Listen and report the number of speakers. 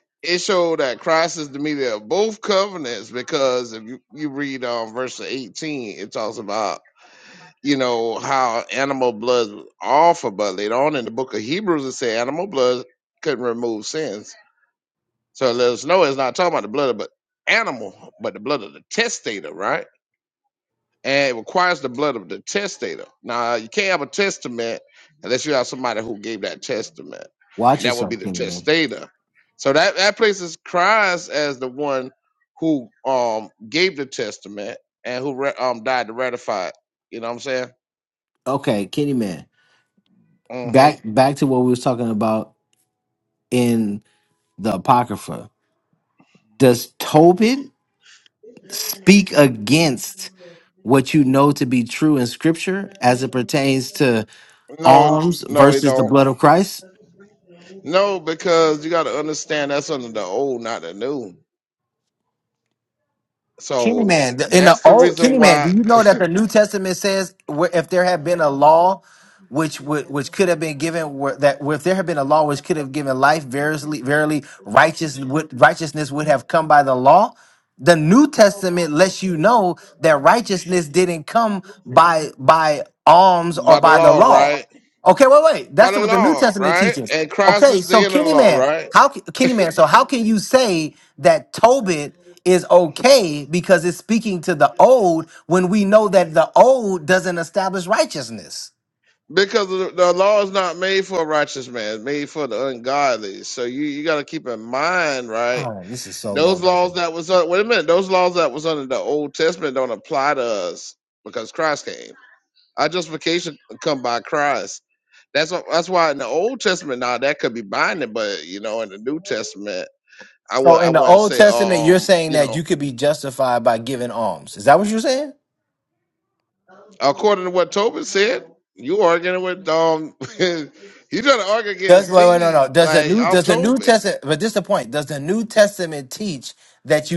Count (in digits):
2